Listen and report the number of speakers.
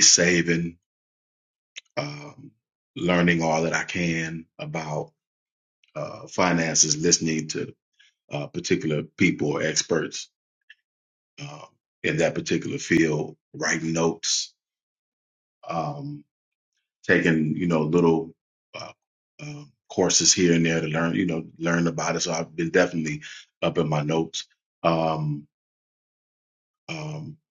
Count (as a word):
one